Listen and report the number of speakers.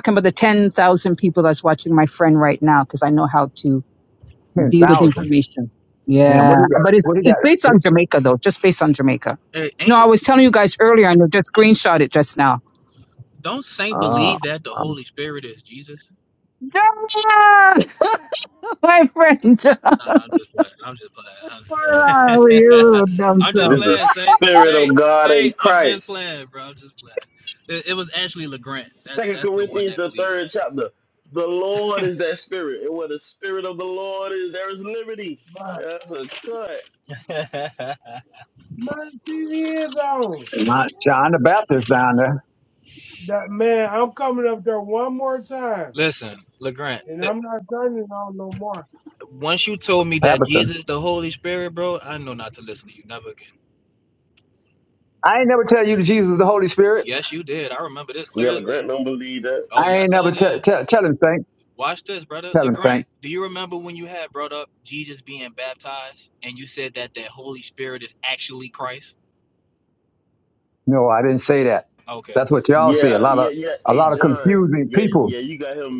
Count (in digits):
5